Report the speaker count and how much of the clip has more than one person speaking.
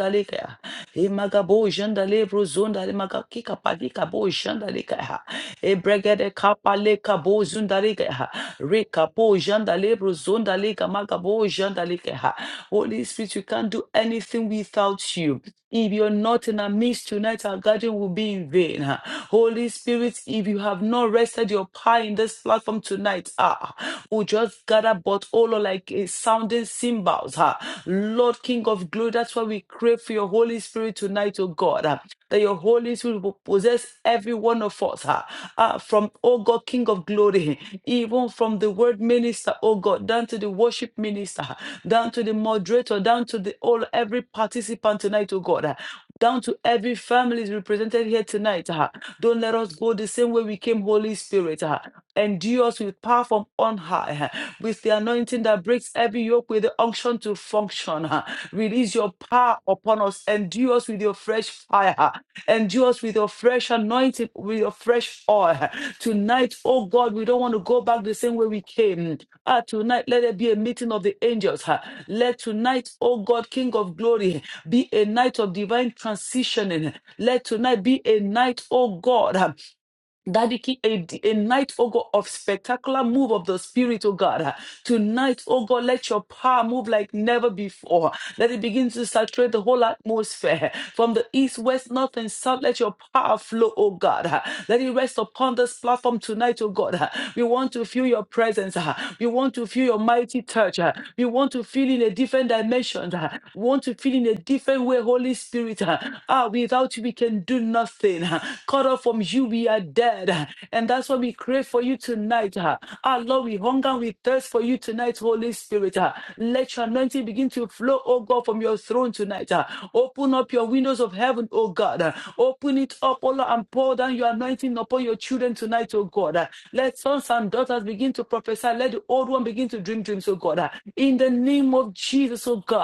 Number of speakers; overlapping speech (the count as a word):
one, no overlap